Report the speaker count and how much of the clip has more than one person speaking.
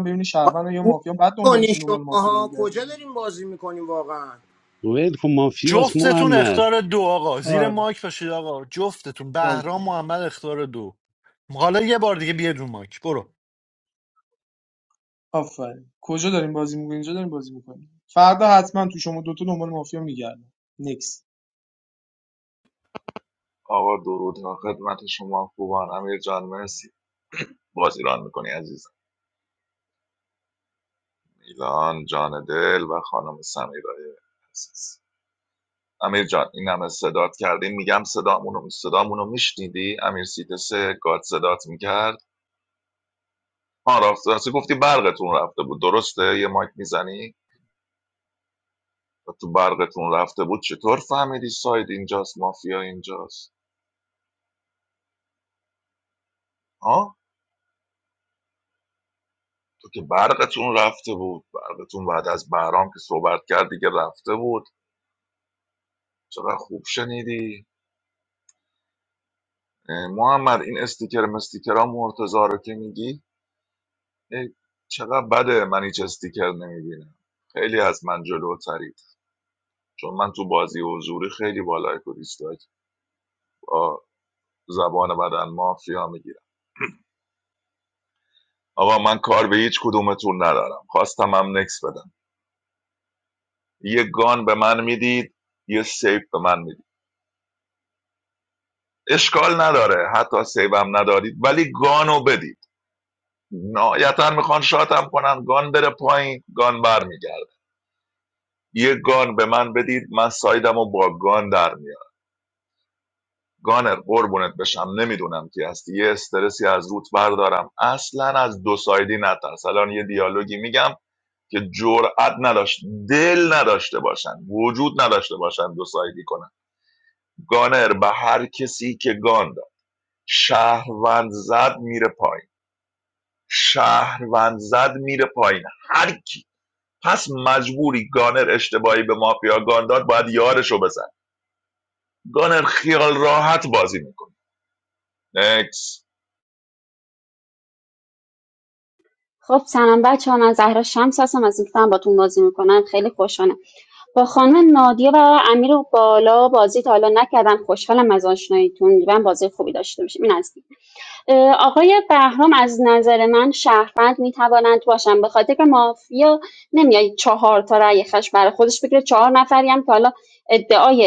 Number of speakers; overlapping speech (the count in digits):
6, about 2%